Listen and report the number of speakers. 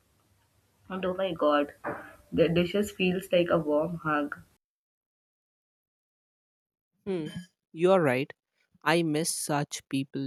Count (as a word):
two